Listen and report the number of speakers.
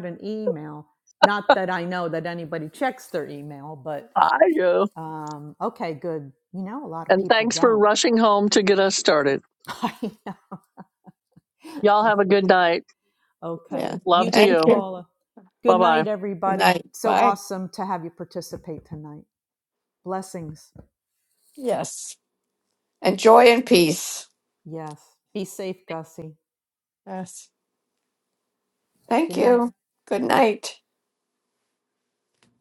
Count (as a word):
three